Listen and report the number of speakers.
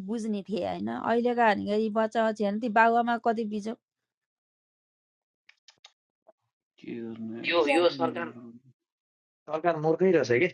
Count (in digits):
3